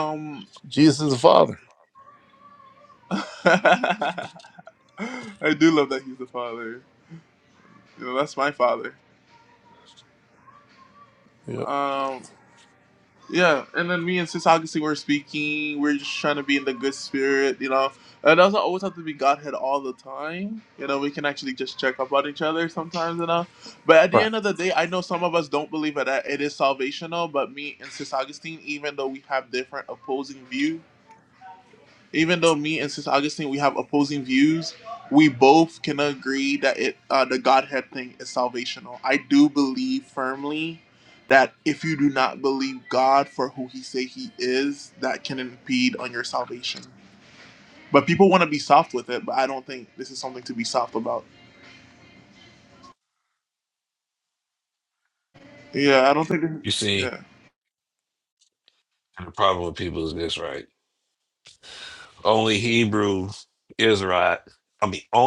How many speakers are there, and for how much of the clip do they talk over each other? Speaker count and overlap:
3, under 1%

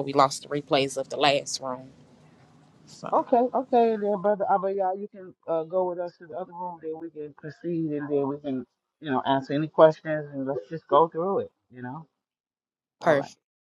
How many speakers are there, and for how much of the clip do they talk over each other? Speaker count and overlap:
2, about 2%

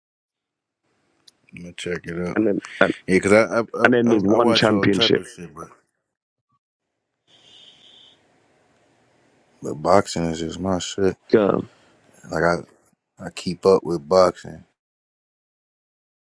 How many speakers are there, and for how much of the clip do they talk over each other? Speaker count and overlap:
2, about 9%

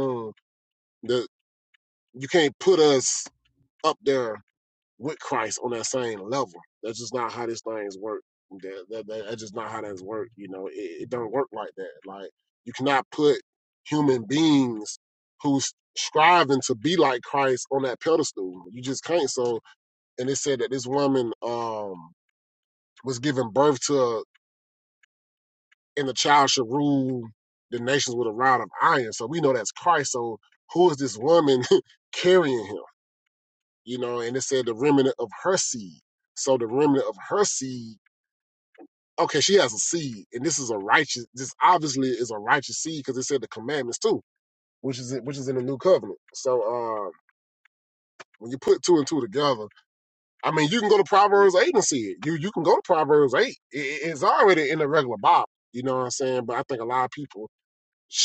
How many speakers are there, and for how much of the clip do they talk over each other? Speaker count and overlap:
1, no overlap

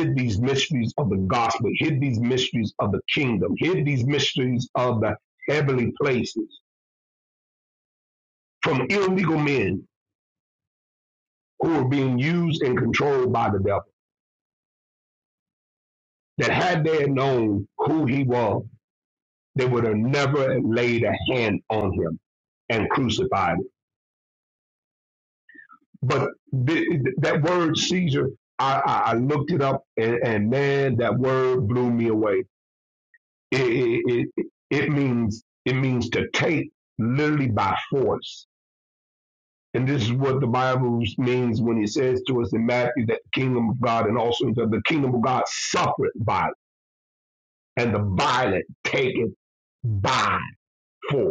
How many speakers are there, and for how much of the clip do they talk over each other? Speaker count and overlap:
1, no overlap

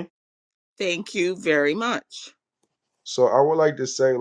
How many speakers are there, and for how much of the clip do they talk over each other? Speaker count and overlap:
2, no overlap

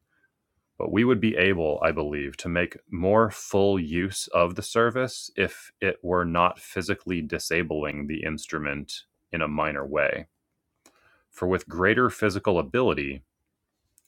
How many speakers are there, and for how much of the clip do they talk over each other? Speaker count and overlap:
1, no overlap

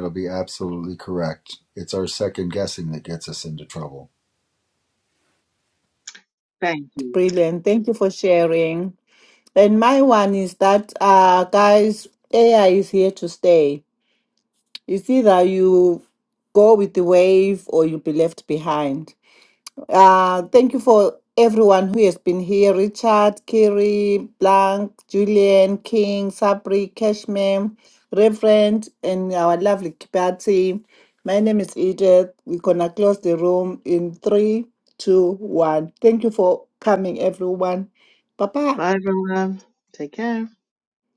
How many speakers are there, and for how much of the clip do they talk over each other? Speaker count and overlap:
3, under 1%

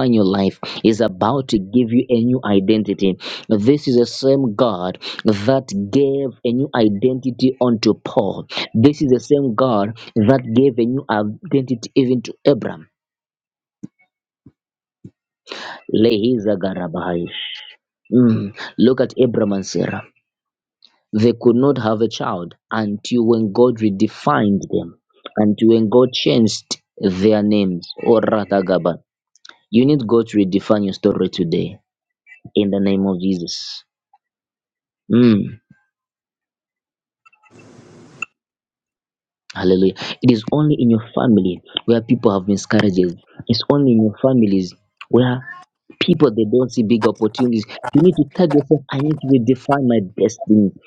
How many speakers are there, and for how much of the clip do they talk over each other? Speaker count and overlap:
1, no overlap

